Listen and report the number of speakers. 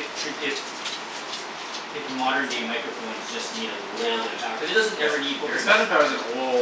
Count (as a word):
two